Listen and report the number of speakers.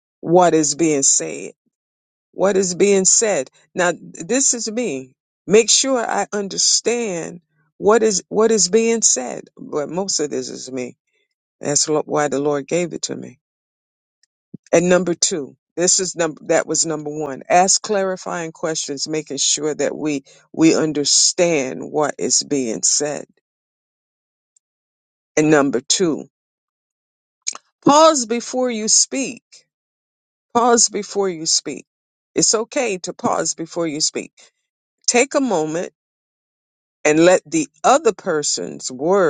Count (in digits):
1